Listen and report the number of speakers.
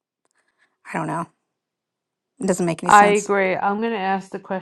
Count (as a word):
two